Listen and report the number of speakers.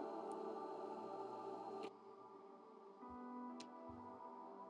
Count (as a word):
zero